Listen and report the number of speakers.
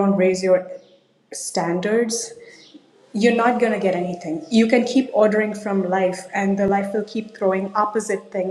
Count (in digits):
1